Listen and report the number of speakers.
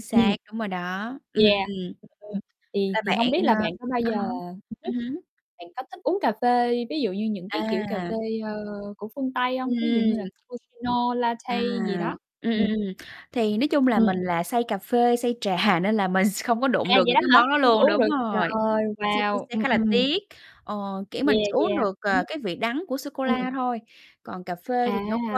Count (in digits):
2